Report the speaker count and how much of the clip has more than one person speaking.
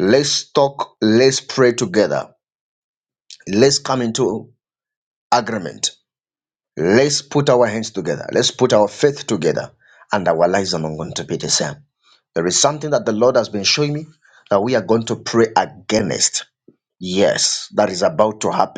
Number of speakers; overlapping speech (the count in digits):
1, no overlap